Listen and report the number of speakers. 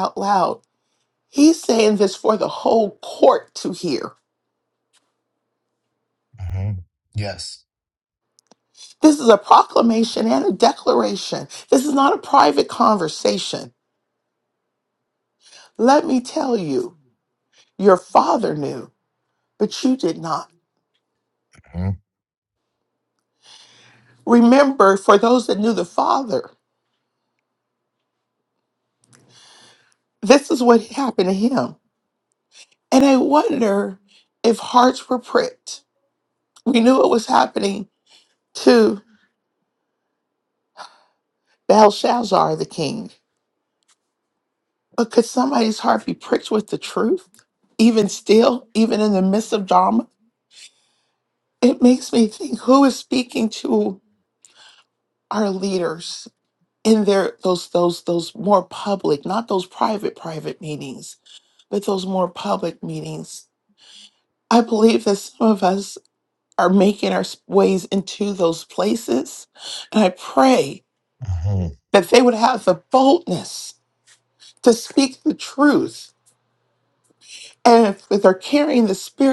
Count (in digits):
2